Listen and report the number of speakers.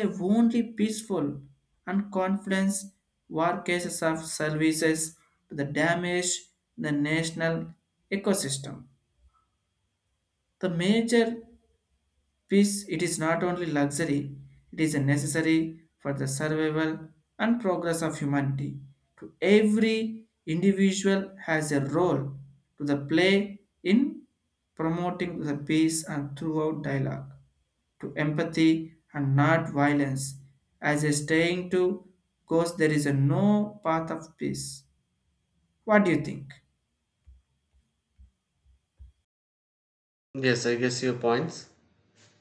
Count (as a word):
two